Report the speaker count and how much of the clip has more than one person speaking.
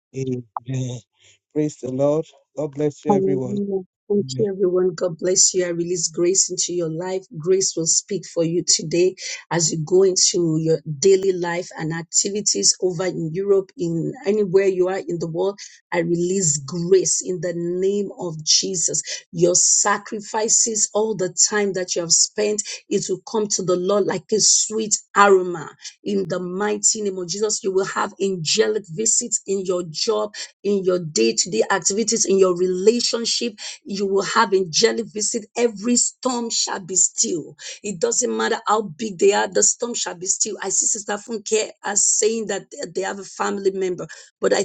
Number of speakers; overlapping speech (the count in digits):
2, about 2%